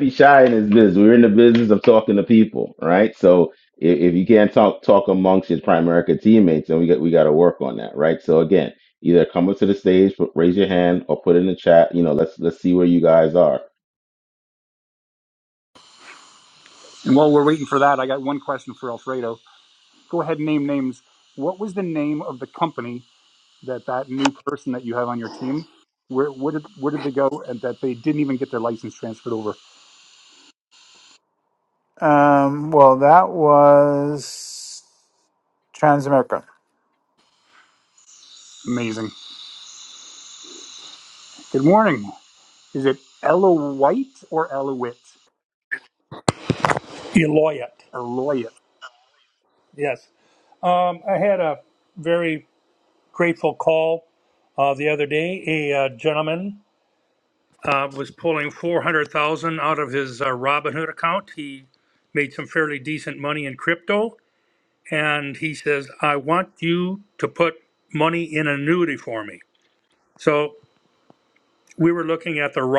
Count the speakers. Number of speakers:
4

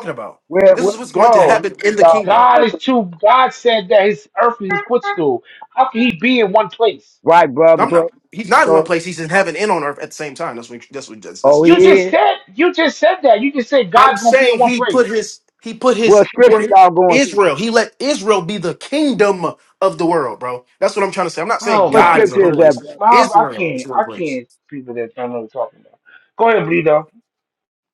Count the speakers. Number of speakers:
3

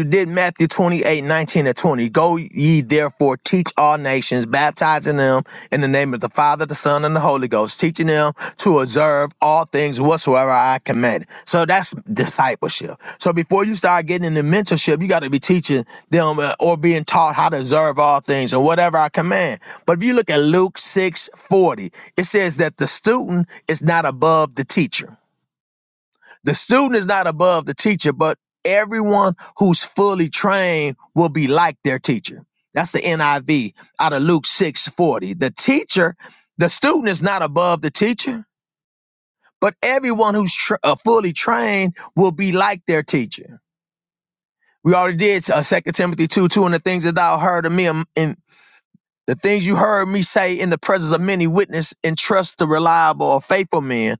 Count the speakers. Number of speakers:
1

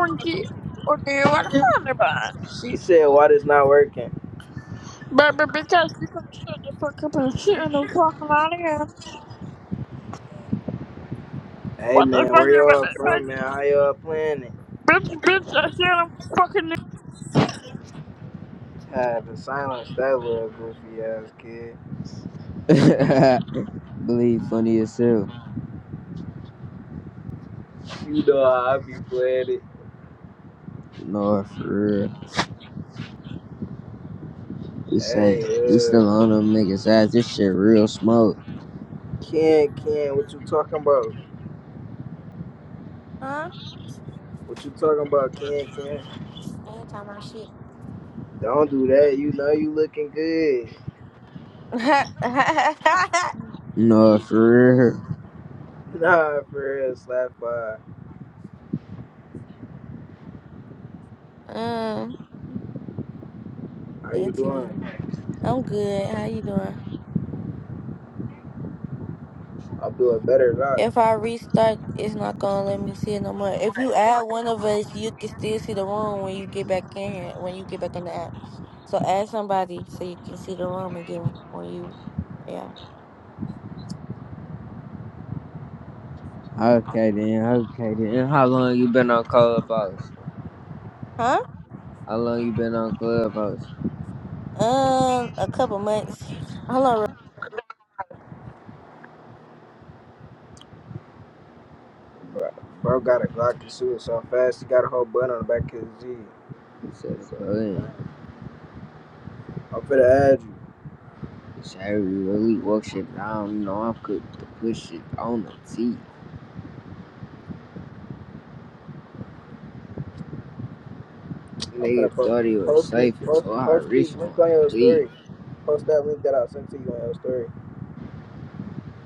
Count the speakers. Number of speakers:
4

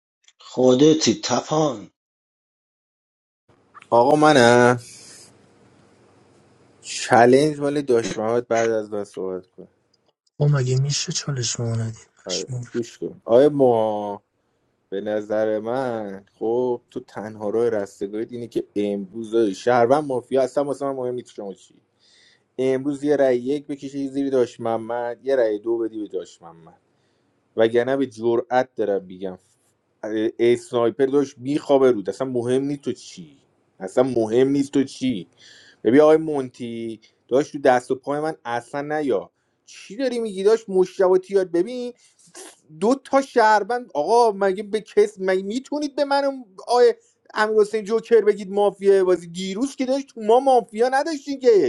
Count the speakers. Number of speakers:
3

